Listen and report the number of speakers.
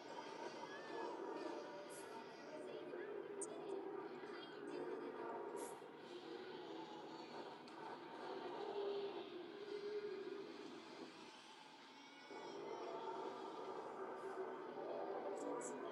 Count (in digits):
0